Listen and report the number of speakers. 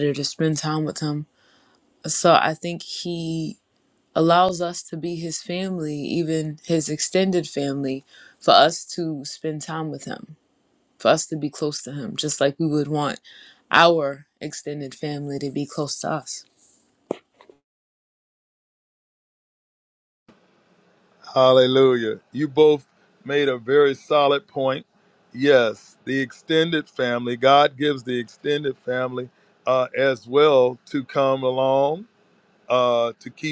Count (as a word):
two